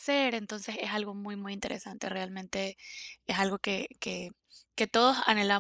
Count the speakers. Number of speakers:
1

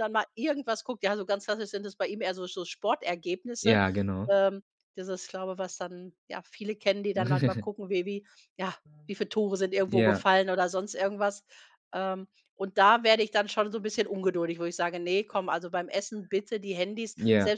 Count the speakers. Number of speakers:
2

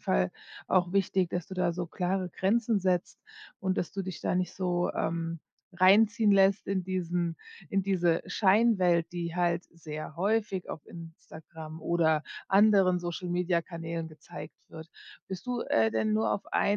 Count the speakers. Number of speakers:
1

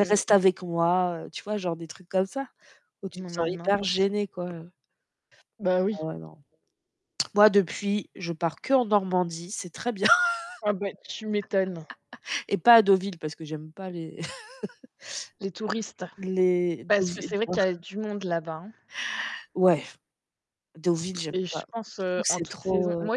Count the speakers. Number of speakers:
2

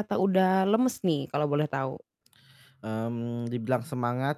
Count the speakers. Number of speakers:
2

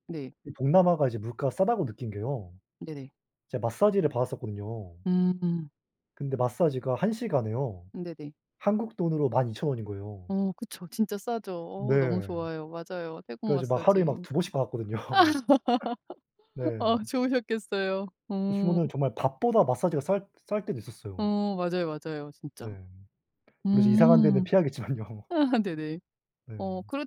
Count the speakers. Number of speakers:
2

